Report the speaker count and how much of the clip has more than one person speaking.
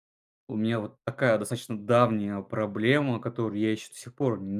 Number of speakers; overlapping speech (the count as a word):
one, no overlap